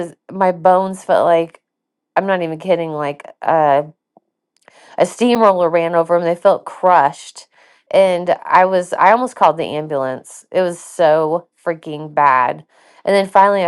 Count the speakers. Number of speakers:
1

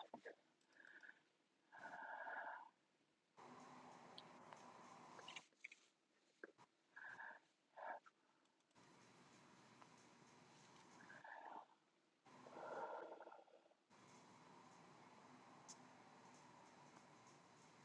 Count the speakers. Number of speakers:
0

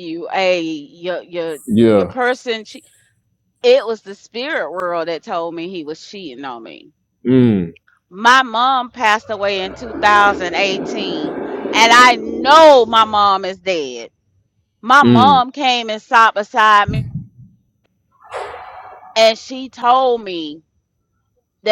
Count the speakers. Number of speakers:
2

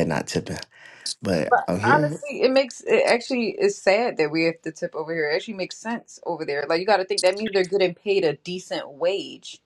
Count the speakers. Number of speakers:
2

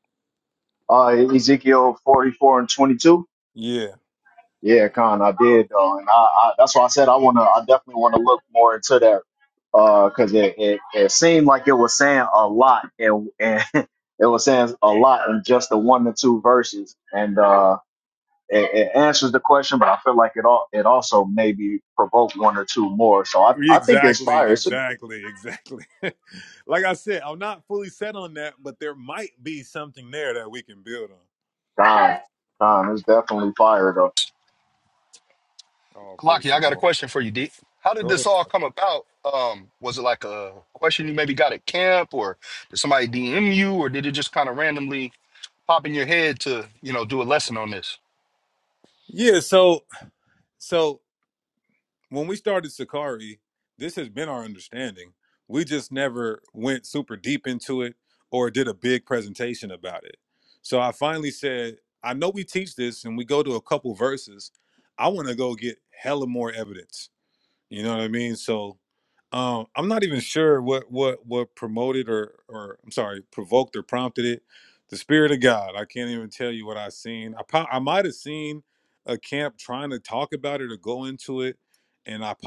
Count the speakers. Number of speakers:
3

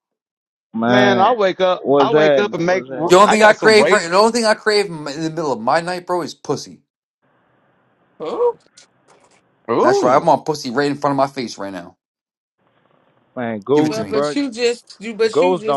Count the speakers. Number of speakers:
4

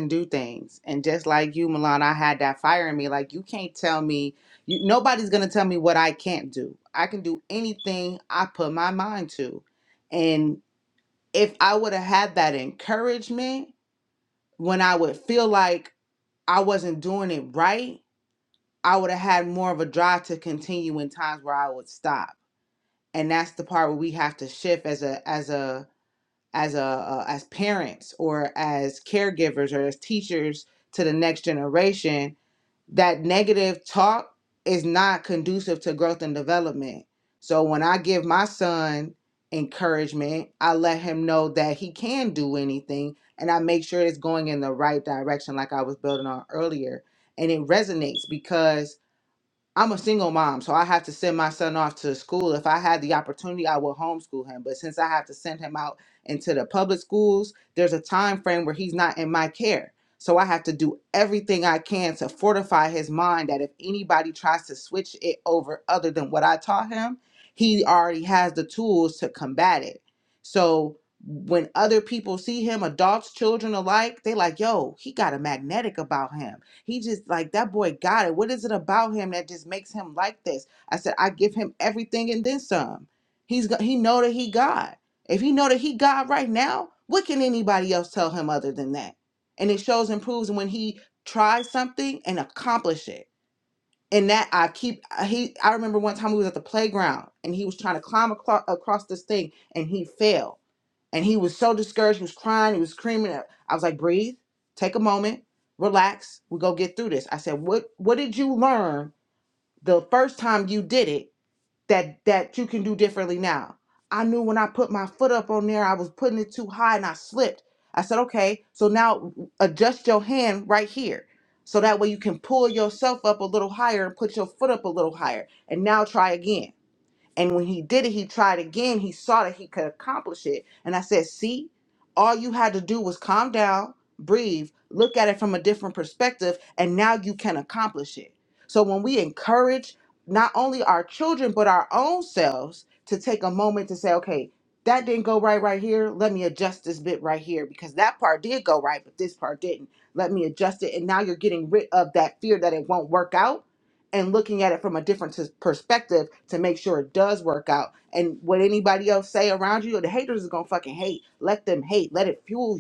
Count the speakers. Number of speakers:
1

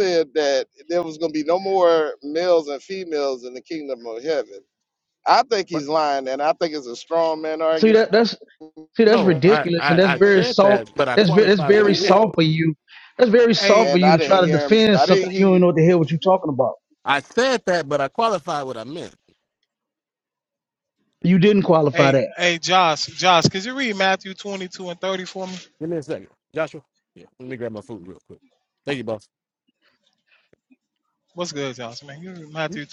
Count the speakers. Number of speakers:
4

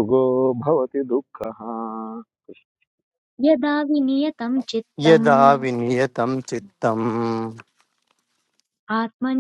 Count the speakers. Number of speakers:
3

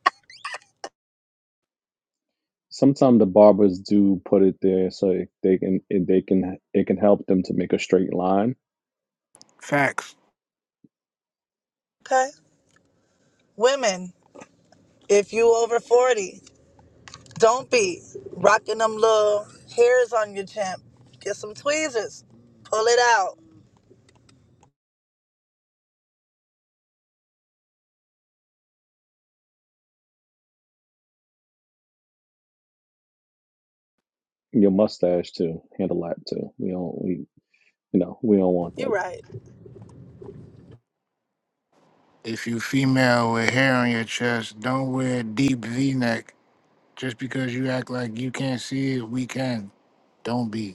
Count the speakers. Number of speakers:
3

